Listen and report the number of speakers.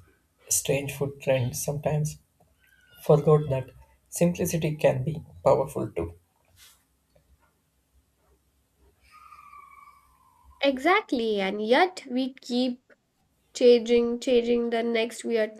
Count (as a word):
two